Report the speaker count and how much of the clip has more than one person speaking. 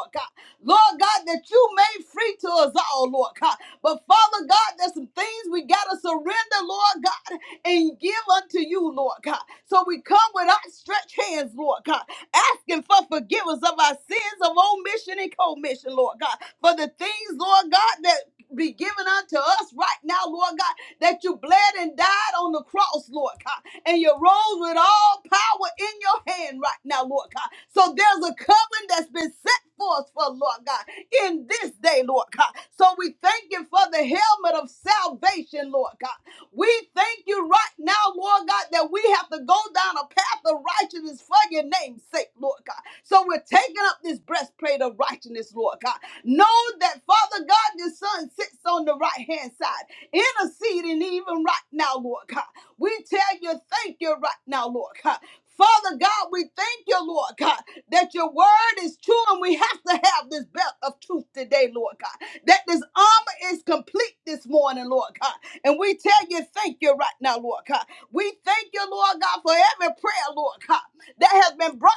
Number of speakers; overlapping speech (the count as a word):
one, no overlap